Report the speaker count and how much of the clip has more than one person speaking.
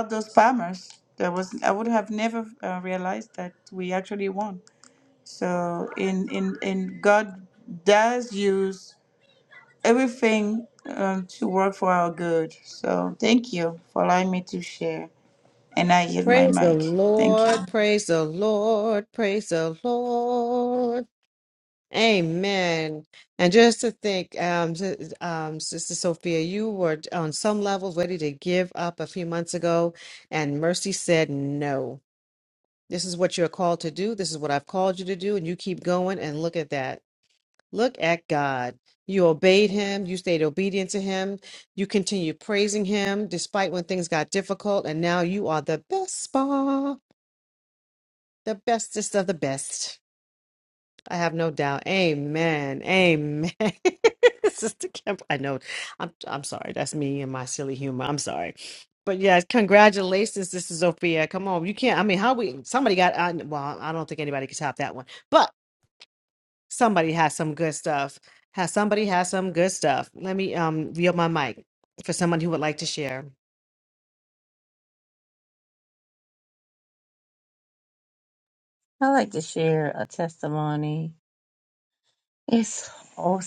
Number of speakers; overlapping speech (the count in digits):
3, about 2%